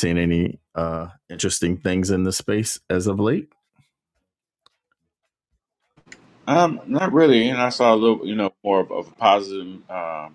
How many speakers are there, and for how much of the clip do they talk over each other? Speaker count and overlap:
2, no overlap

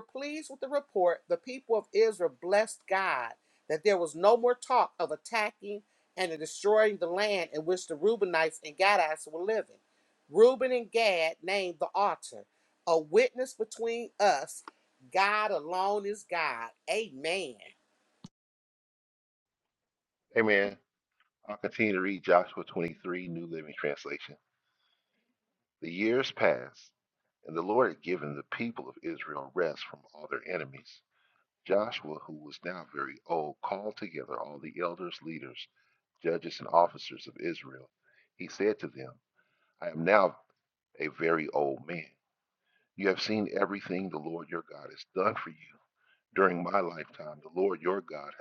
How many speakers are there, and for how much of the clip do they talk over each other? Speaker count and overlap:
2, no overlap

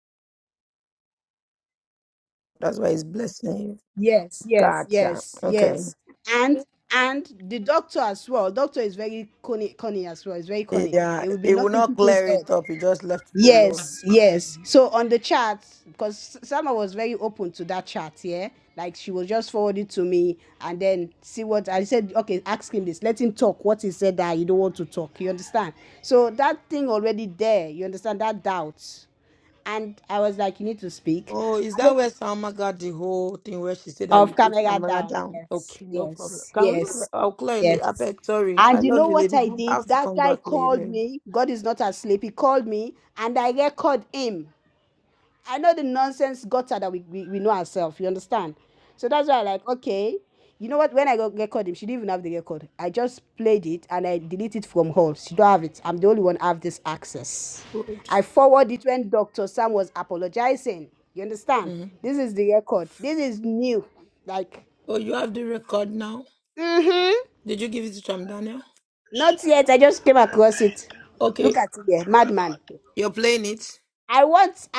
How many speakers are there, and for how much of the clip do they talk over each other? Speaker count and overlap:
2, about 11%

